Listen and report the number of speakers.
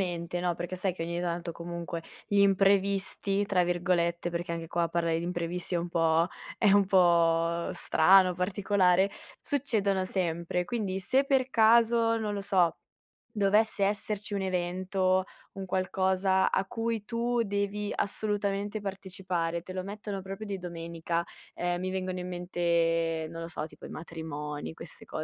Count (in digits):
1